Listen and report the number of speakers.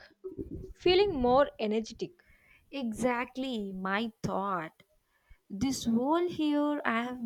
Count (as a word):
two